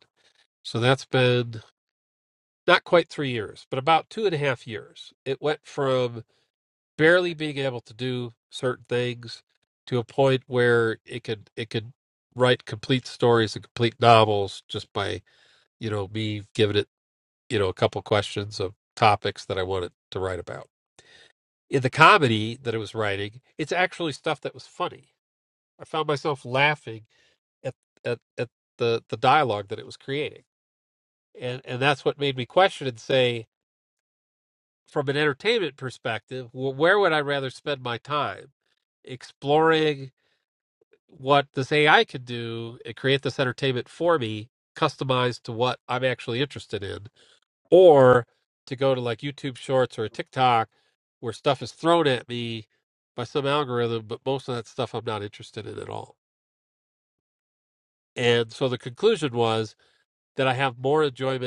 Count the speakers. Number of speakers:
1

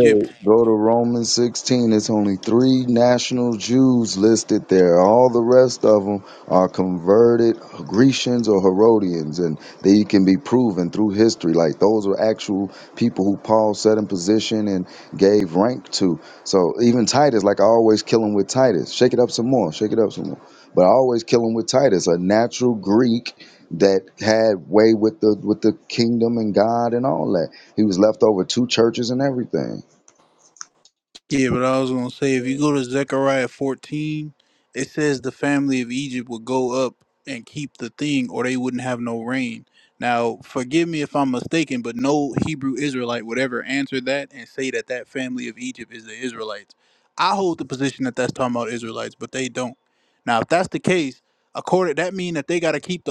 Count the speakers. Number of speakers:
2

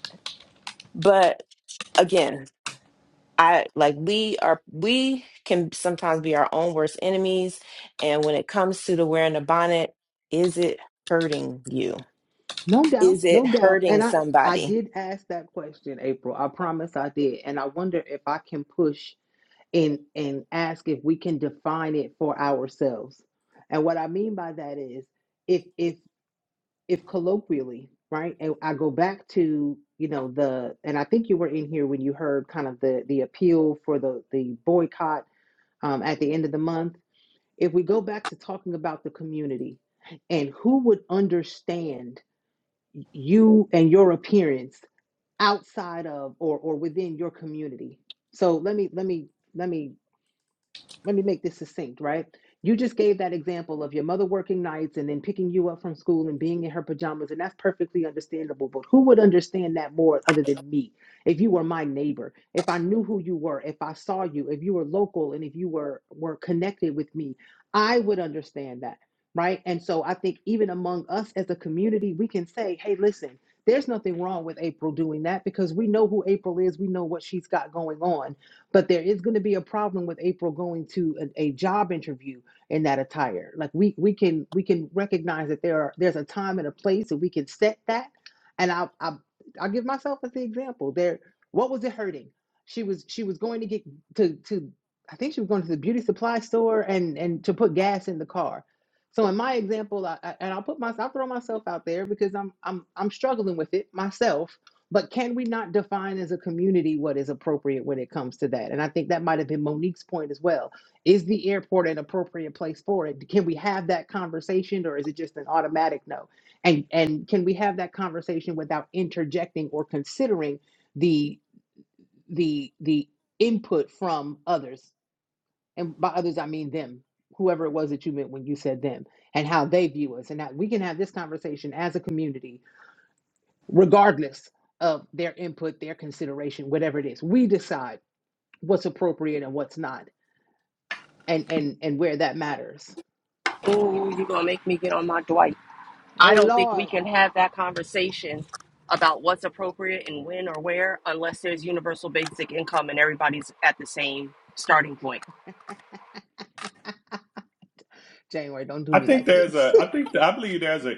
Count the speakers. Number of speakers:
4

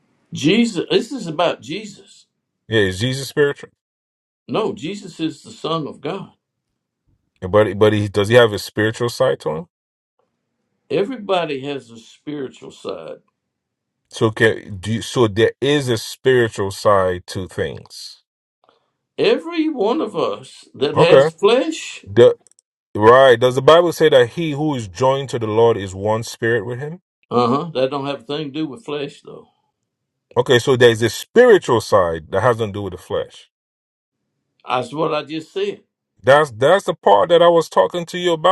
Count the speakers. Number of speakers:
2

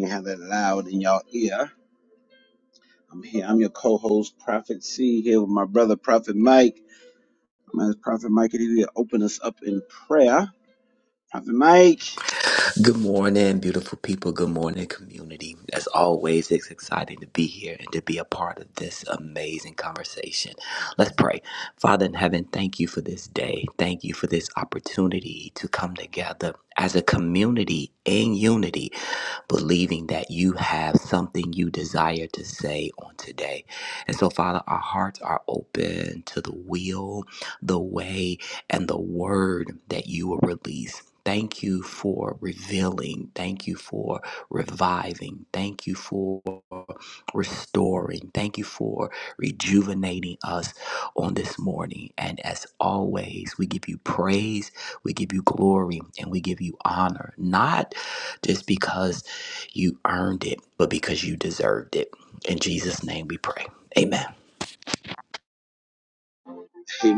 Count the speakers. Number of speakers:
2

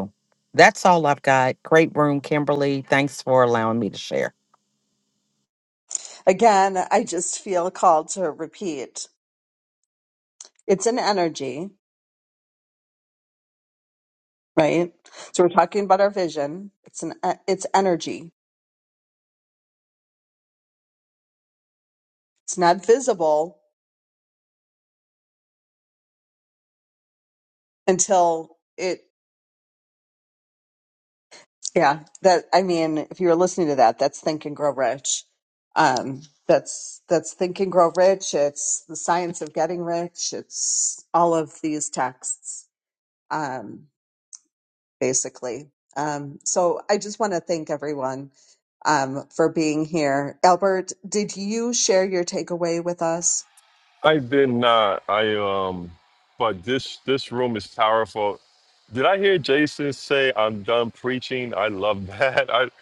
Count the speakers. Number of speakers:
3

